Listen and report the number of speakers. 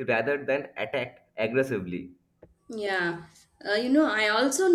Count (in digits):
2